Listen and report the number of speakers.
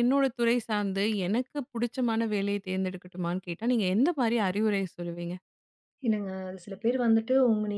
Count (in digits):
2